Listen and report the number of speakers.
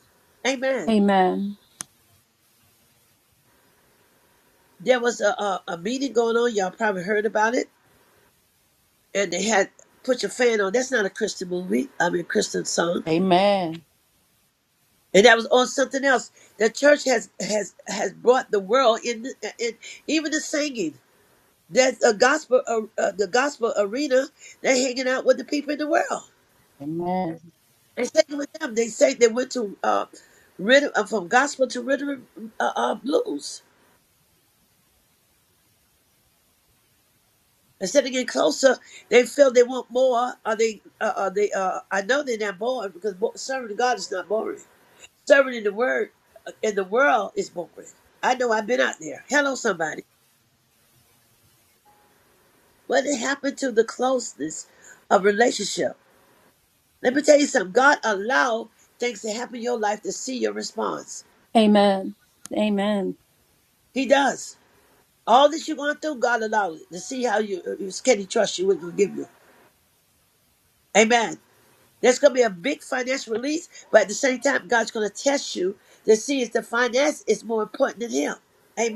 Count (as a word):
three